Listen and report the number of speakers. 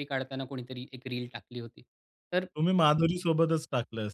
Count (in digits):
2